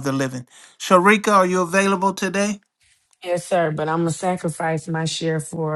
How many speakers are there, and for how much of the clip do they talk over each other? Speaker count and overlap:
two, no overlap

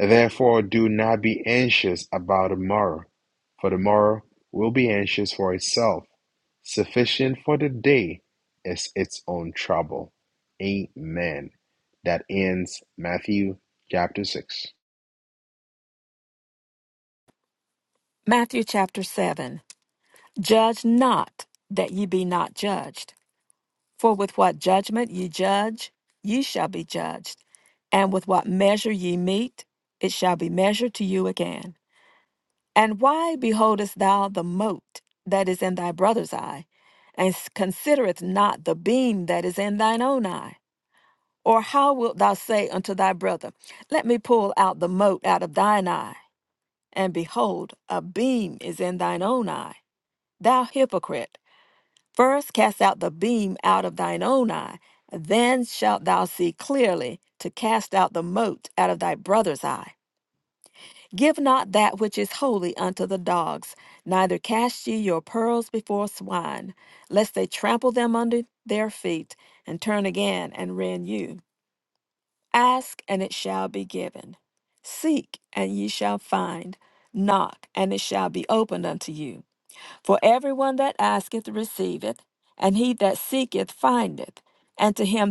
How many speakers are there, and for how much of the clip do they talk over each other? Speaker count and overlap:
two, no overlap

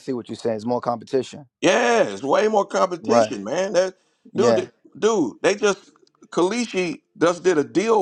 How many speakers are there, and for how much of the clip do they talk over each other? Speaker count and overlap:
two, about 7%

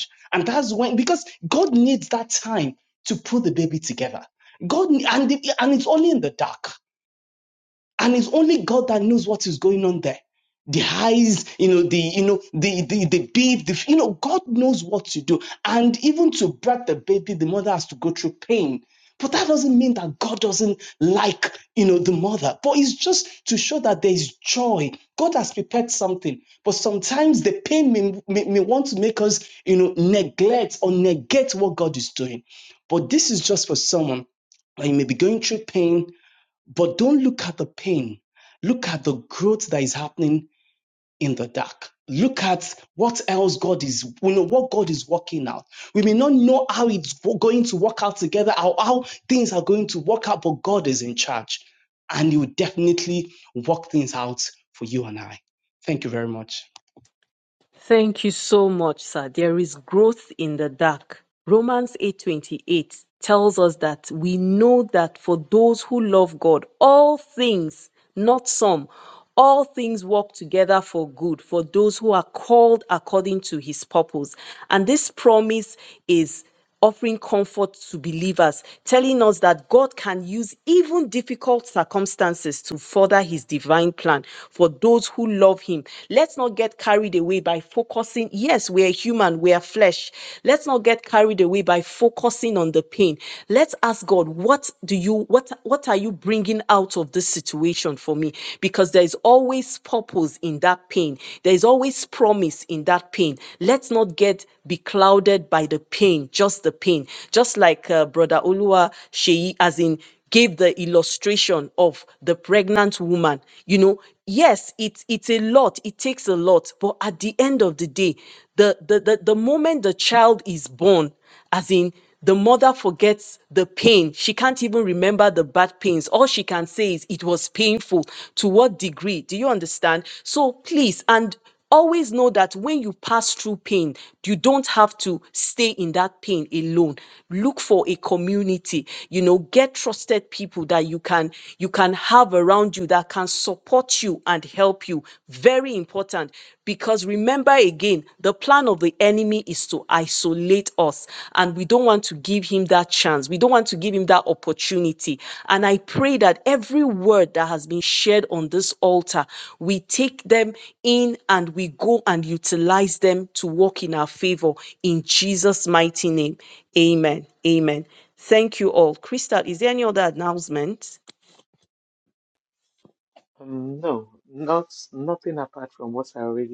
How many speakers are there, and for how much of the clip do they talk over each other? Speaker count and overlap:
three, no overlap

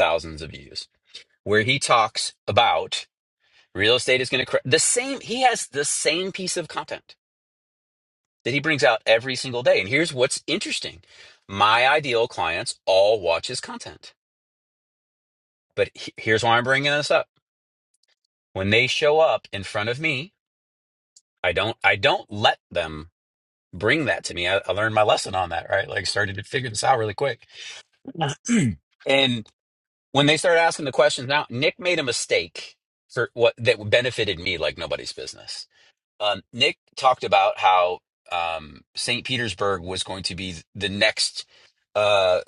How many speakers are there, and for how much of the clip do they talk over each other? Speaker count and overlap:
one, no overlap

